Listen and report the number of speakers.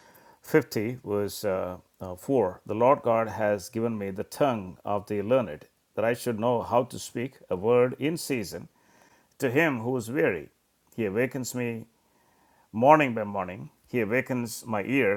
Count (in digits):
1